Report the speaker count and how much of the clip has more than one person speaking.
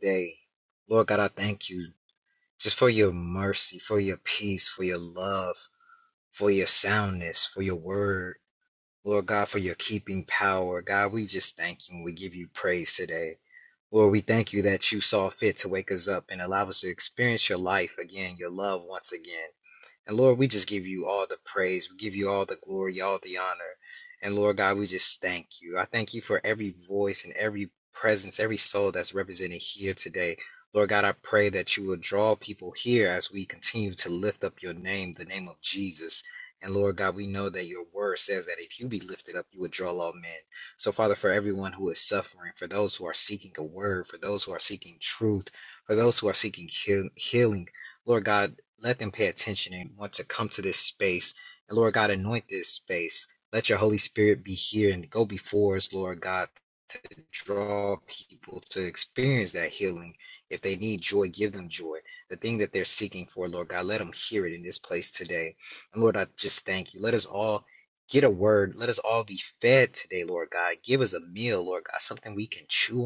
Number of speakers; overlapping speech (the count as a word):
one, no overlap